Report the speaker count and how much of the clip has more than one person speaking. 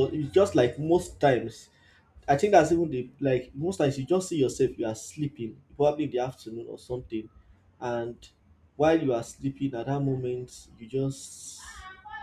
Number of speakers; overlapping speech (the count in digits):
1, no overlap